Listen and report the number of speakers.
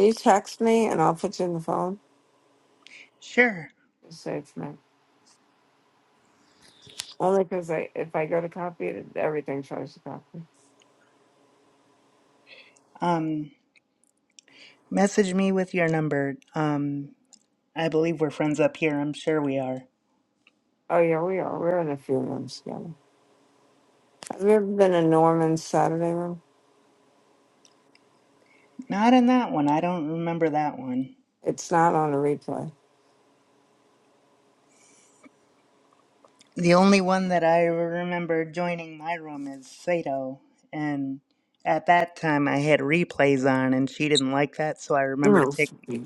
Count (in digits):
2